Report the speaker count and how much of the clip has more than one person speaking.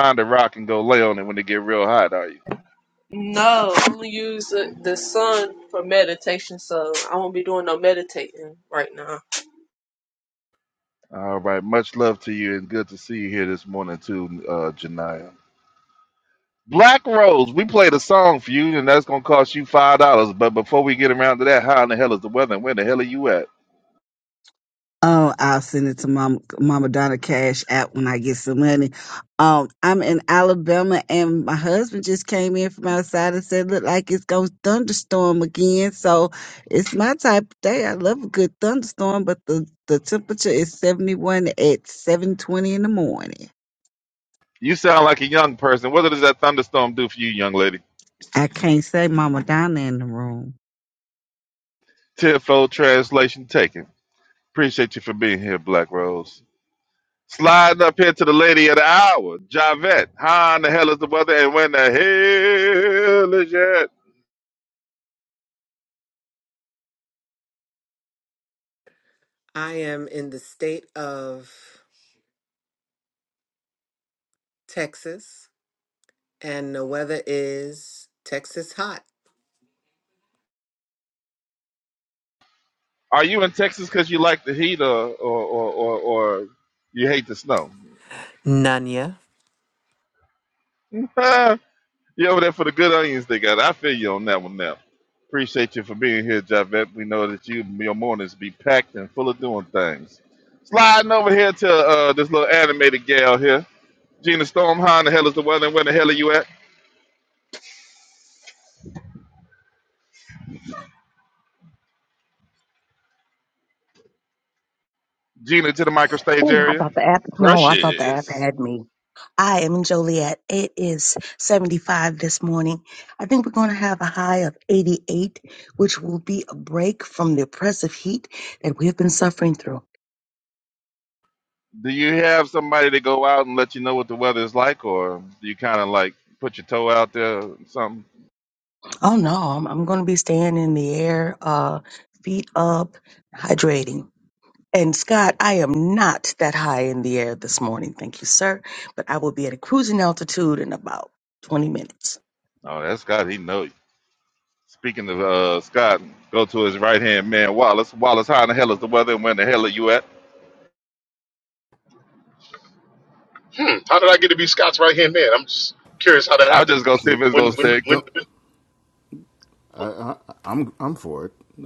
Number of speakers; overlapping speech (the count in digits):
7, about 1%